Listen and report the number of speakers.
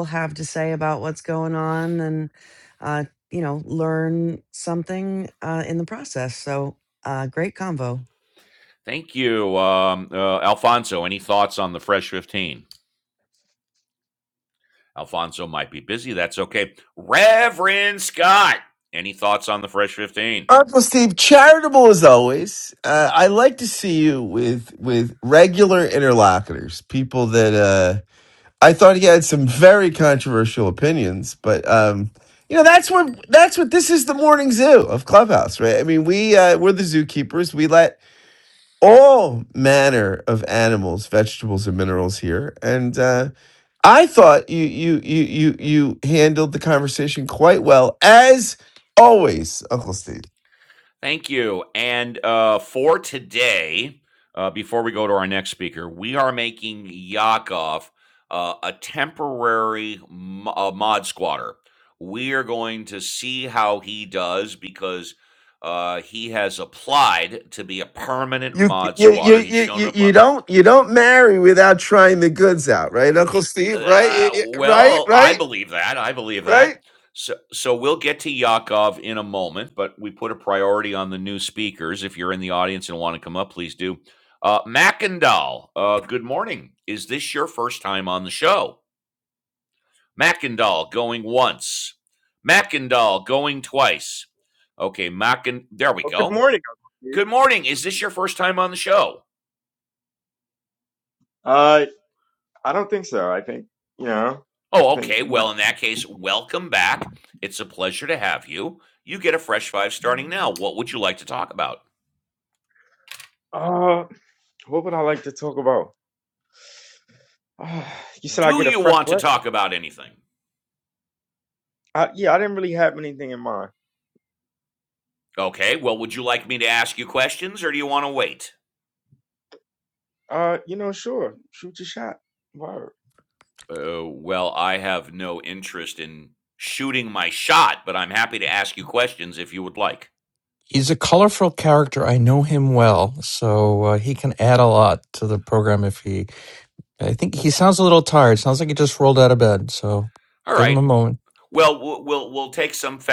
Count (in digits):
5